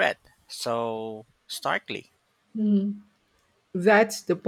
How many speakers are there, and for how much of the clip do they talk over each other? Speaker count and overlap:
two, no overlap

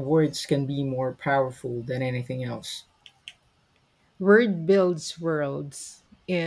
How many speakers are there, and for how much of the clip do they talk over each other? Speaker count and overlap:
two, no overlap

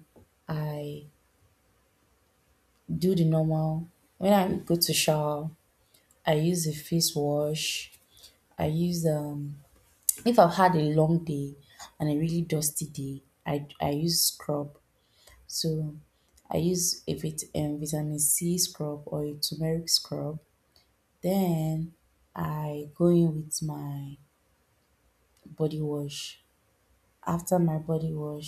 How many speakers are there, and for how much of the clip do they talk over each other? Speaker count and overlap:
one, no overlap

